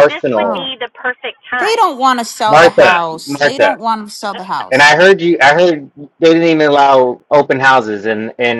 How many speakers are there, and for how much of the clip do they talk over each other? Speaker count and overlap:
3, about 26%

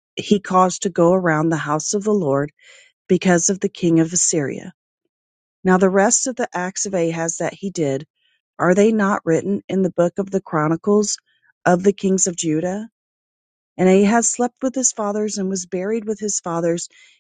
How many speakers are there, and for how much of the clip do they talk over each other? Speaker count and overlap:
1, no overlap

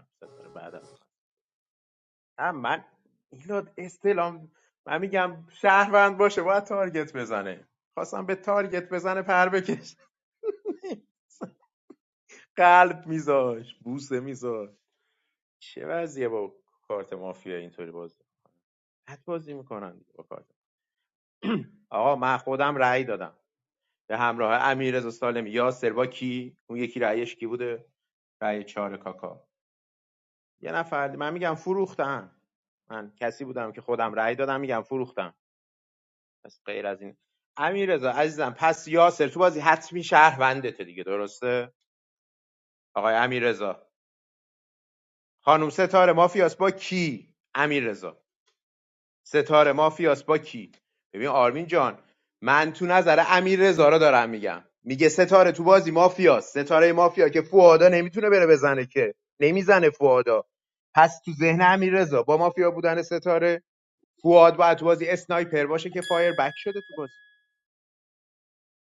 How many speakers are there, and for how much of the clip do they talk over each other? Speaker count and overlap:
1, no overlap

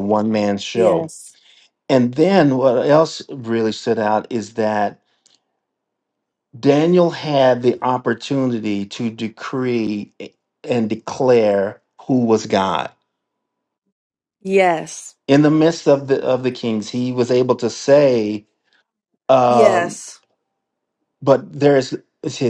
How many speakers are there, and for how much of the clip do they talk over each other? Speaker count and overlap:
2, about 3%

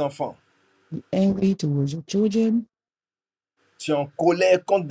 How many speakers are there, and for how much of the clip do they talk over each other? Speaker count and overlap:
2, no overlap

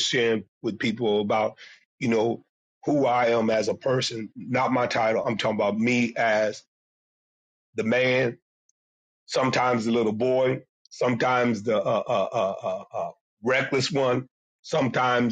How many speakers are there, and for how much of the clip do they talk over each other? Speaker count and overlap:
1, no overlap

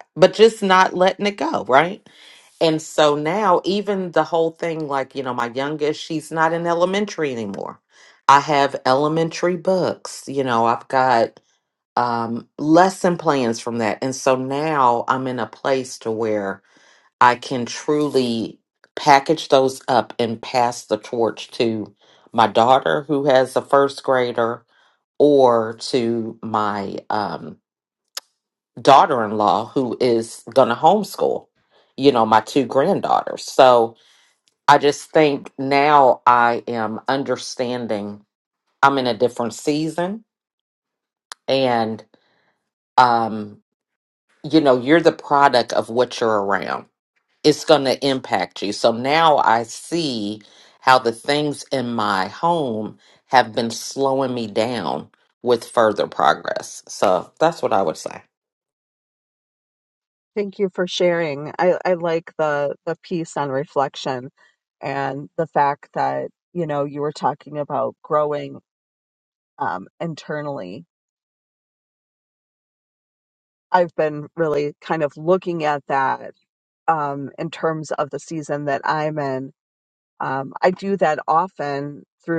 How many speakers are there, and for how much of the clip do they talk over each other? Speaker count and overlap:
2, no overlap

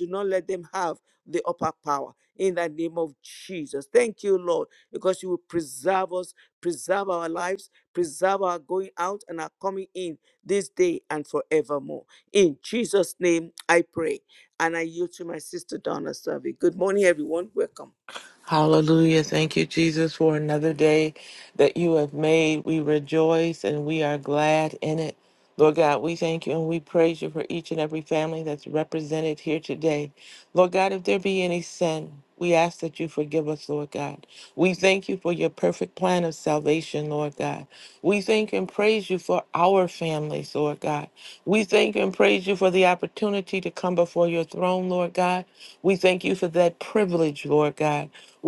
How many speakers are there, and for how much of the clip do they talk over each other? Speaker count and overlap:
2, no overlap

